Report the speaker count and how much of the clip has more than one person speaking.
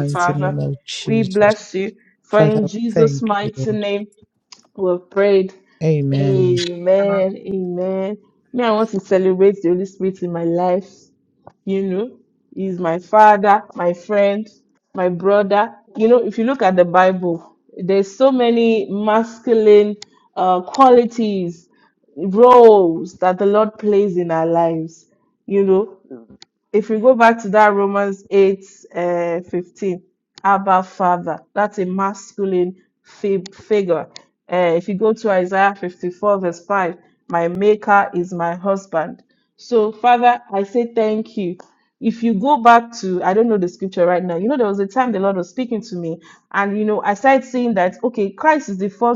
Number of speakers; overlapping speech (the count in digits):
2, about 6%